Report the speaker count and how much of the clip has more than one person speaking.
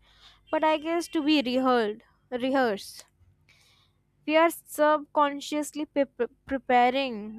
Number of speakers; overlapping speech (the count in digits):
1, no overlap